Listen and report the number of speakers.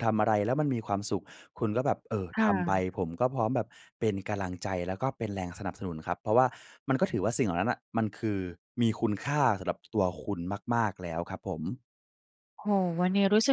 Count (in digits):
2